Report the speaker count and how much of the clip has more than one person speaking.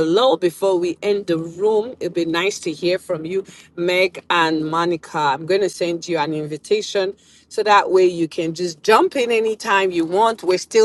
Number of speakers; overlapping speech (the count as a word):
one, no overlap